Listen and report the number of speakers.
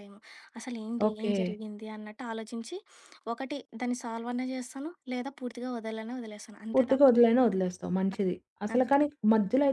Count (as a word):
two